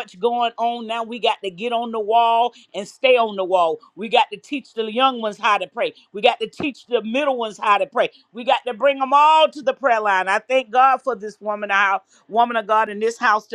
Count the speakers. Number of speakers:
one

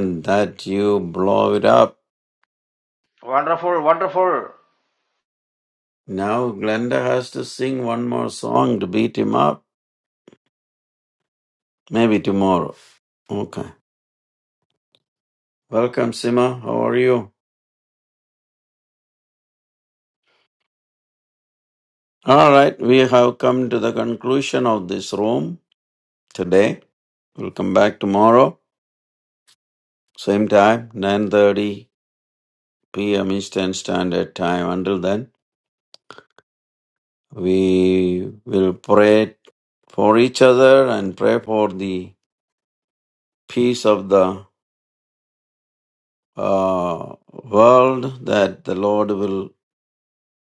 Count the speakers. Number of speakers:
two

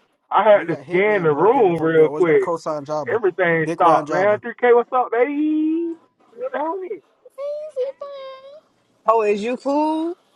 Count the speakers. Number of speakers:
four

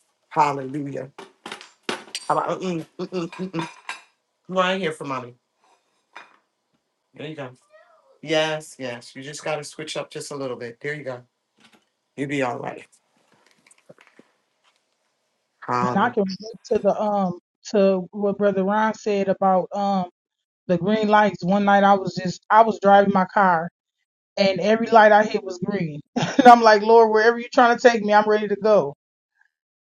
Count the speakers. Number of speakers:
two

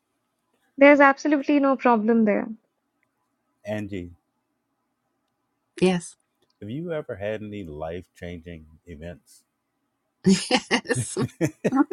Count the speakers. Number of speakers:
three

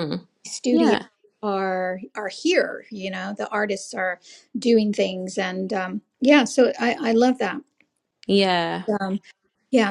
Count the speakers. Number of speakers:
two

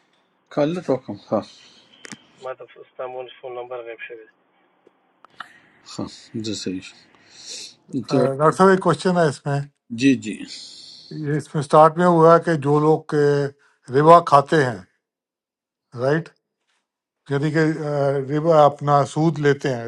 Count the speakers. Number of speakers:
three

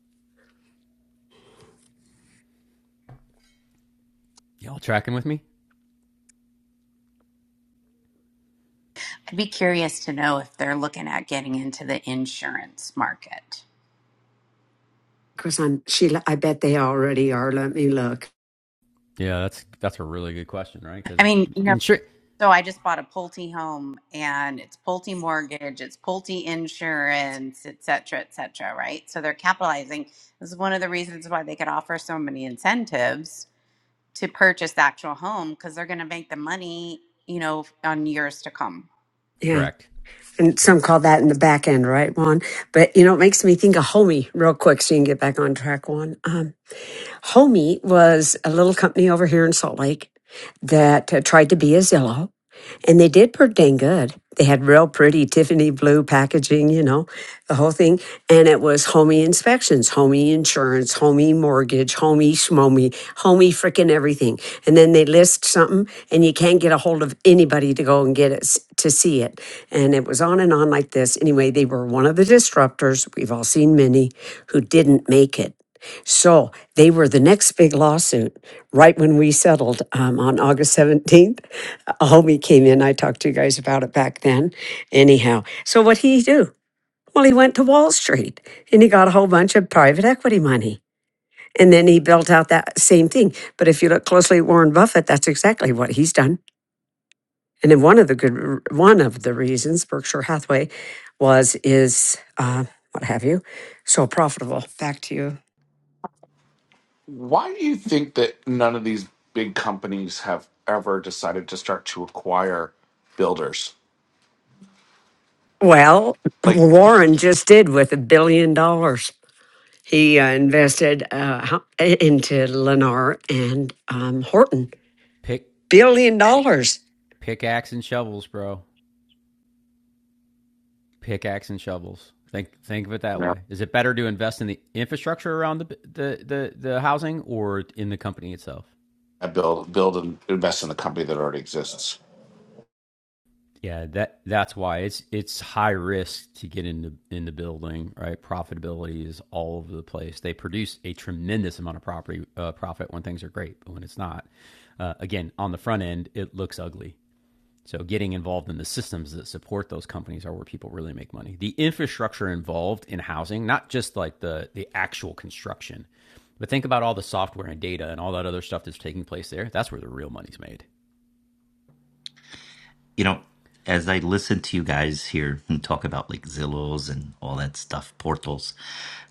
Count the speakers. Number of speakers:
five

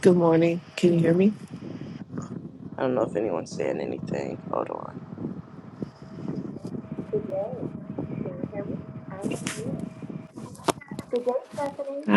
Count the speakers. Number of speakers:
three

